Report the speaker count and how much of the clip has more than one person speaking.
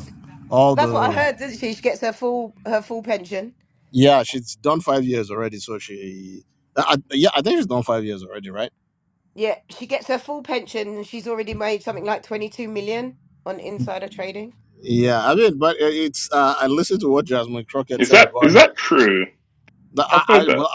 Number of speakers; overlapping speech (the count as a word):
three, about 9%